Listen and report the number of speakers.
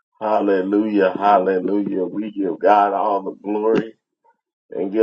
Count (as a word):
one